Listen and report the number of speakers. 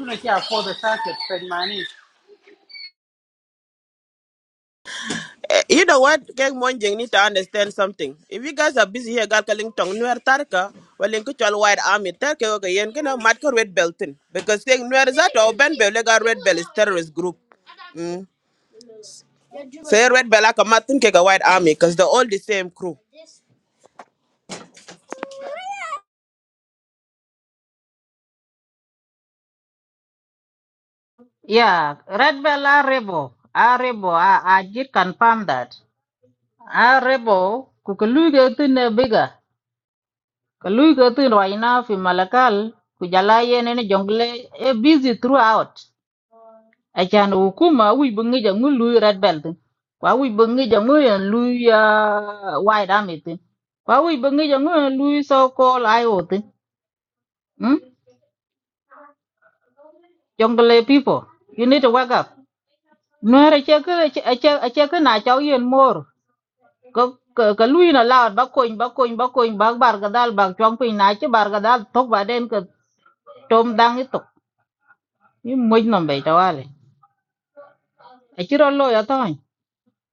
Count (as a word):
three